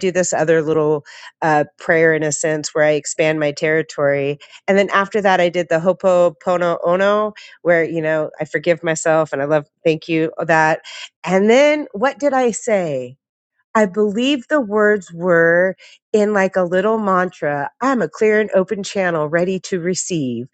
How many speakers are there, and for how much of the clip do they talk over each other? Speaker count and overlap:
one, no overlap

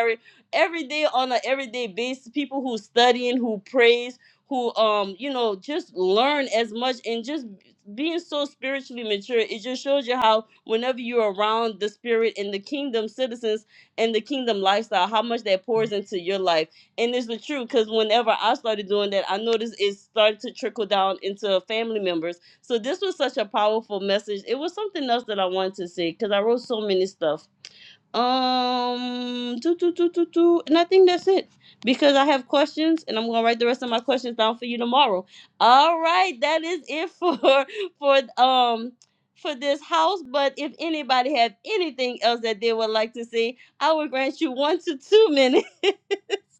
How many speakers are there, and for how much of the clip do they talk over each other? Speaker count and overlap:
one, no overlap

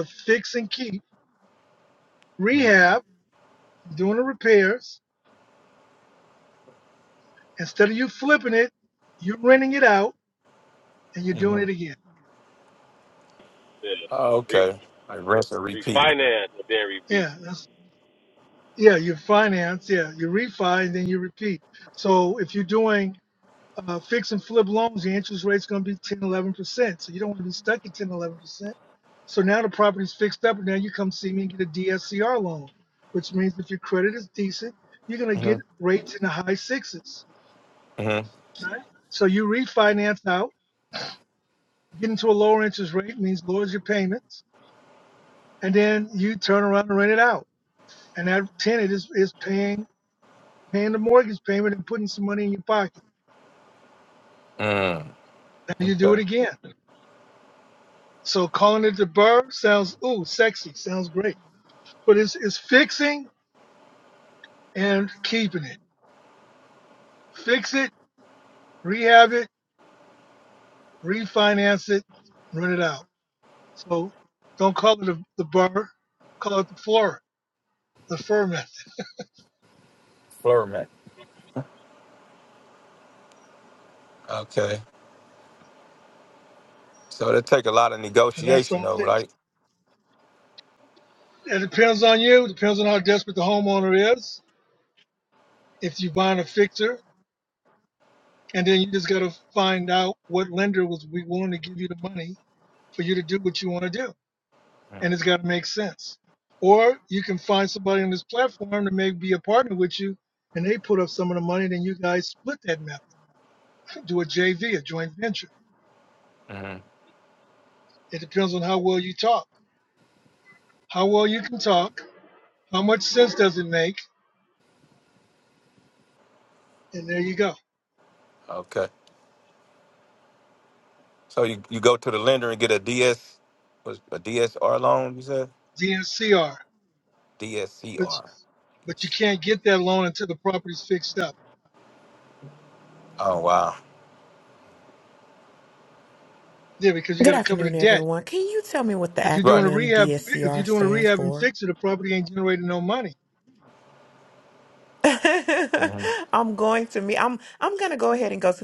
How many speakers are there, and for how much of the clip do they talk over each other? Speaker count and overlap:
four, about 4%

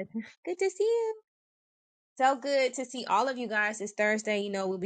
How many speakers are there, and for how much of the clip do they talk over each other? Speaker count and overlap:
one, no overlap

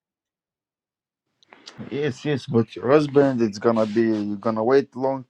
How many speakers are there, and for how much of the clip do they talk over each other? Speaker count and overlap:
one, no overlap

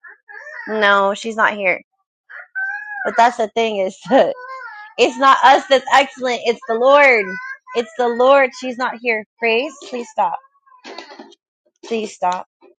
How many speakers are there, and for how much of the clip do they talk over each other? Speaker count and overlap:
one, no overlap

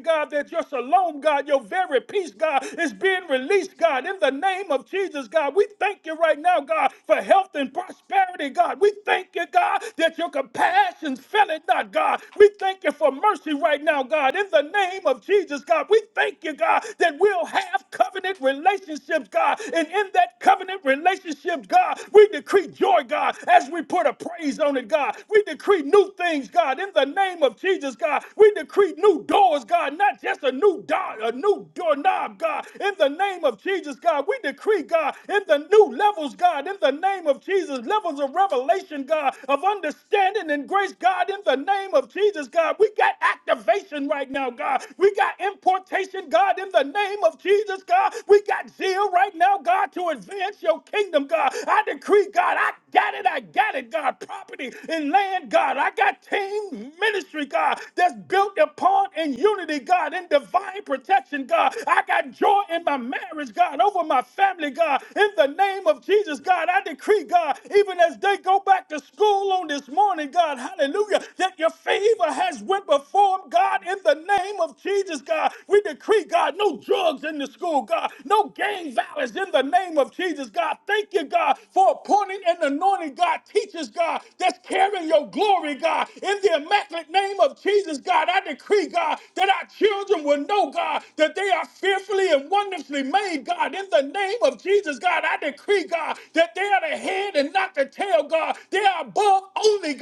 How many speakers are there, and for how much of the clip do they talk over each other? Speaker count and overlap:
one, no overlap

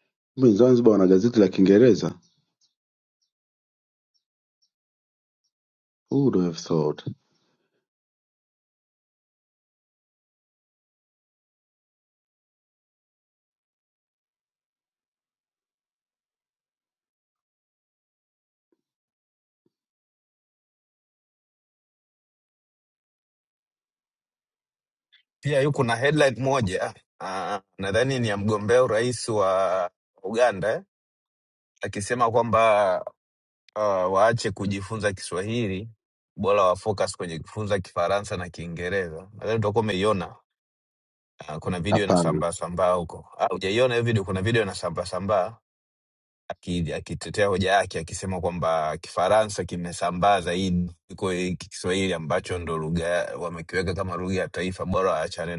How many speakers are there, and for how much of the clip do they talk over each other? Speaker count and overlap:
two, about 1%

